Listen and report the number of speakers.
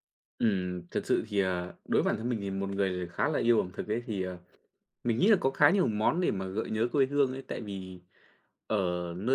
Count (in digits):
1